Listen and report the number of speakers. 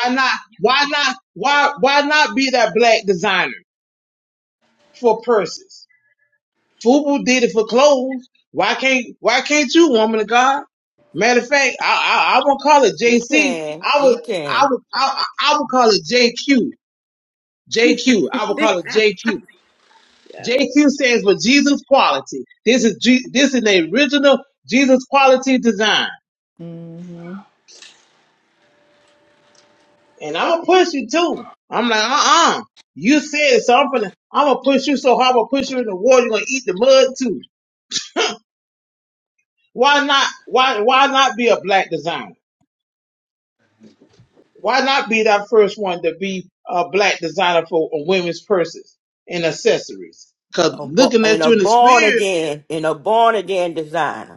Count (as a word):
three